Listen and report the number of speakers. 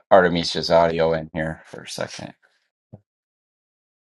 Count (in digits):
1